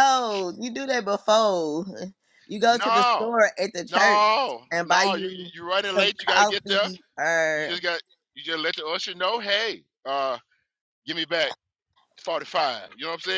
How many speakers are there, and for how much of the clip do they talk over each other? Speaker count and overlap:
2, about 21%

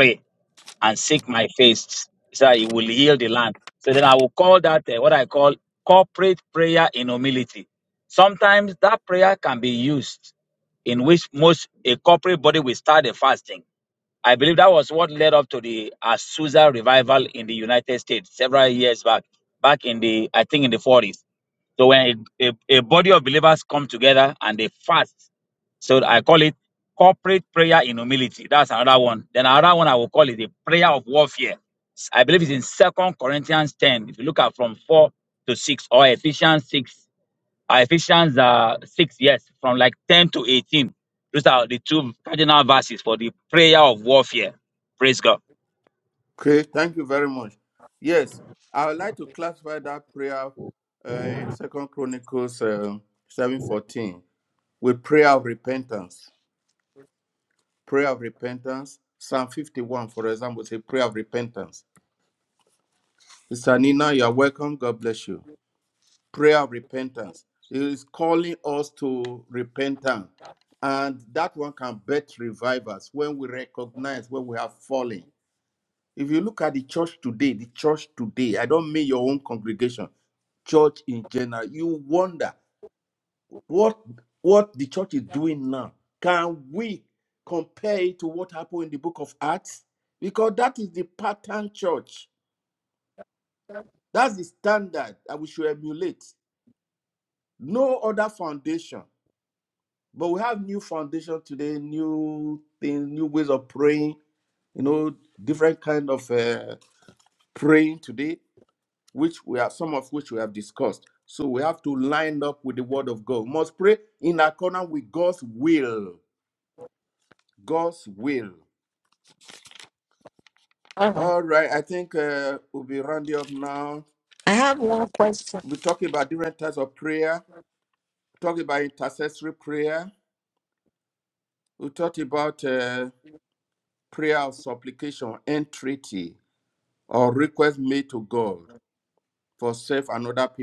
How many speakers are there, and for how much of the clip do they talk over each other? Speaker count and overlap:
3, under 1%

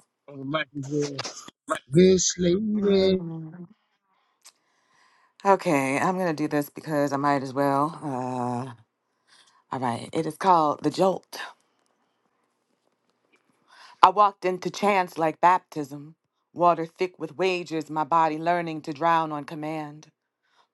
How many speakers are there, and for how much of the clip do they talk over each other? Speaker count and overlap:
2, about 2%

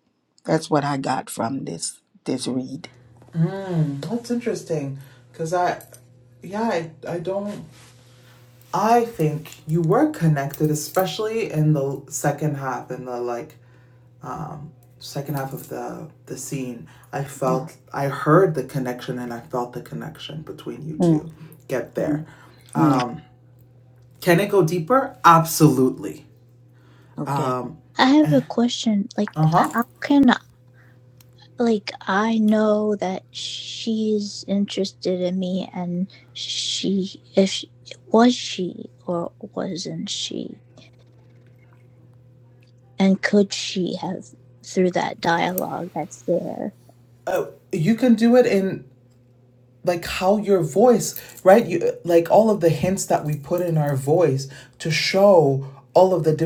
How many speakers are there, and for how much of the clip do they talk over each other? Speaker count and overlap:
3, about 1%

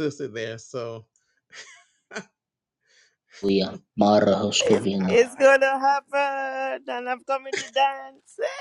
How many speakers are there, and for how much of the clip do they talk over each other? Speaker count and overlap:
3, about 6%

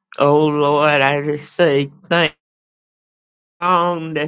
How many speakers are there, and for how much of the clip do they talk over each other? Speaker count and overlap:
1, no overlap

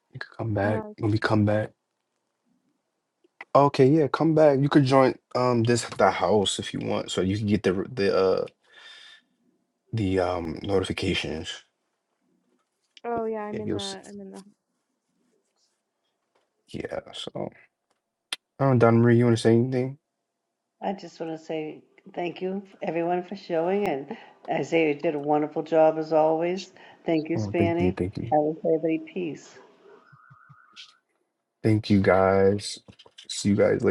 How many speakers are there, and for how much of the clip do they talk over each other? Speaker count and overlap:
3, about 6%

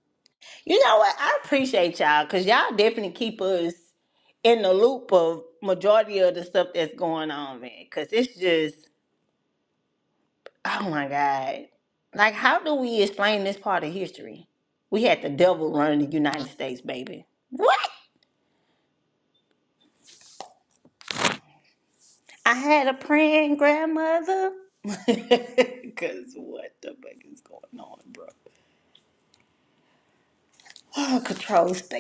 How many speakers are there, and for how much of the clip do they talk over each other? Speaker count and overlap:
1, no overlap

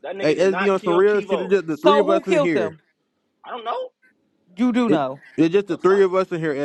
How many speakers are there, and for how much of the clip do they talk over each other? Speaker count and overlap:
3, about 44%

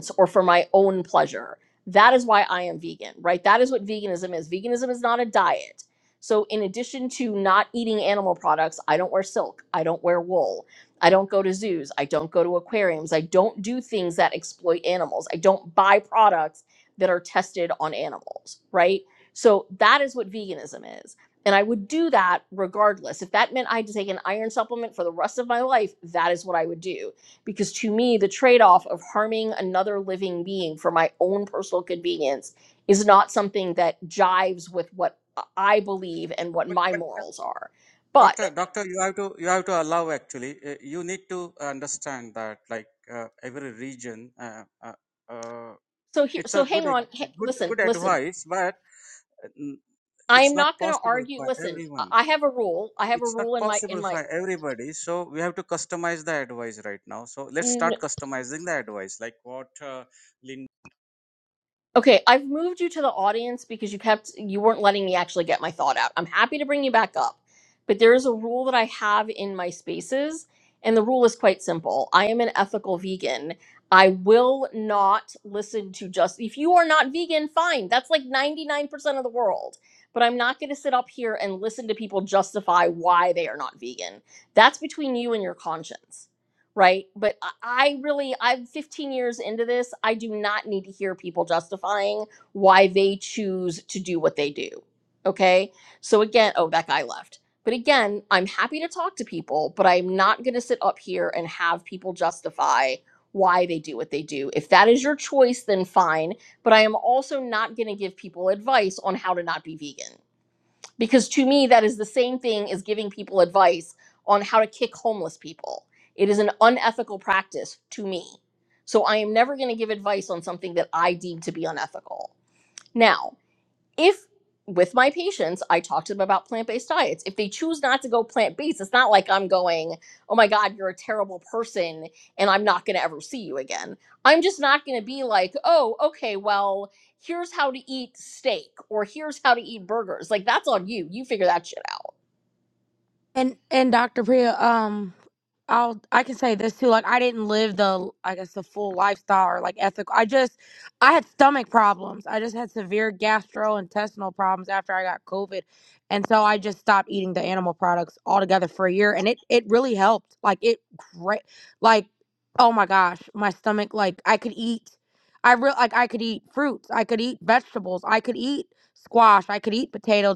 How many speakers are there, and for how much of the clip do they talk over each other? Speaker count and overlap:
3, about 3%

